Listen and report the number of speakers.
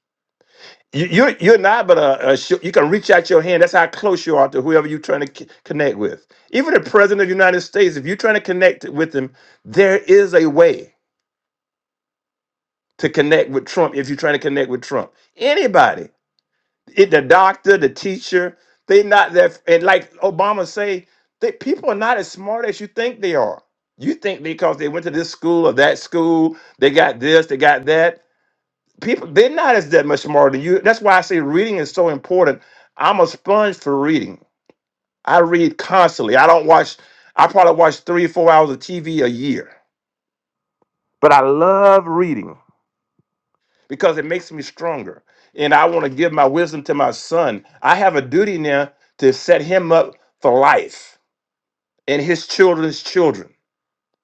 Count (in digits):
1